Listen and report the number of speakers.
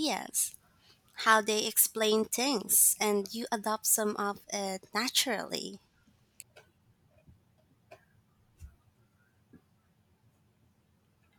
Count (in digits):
1